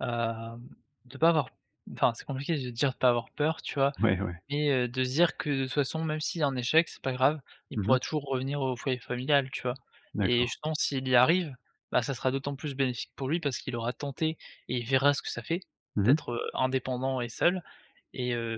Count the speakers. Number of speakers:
two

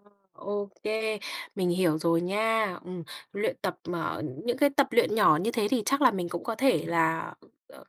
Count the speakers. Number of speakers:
one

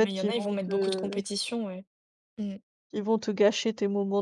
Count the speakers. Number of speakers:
two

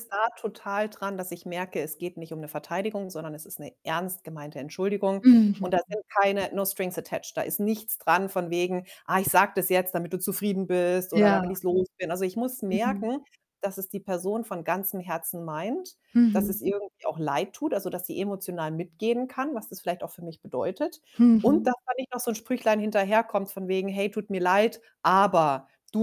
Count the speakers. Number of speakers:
two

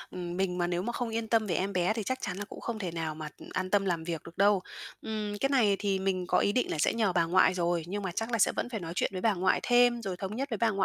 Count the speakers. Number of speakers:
one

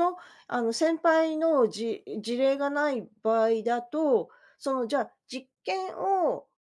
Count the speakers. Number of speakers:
one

